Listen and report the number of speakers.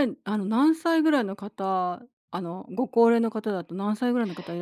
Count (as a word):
one